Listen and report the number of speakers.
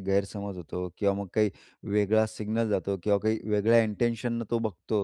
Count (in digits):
1